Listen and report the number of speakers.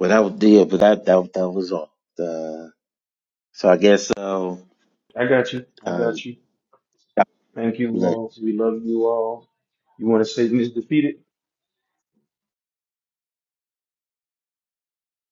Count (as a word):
two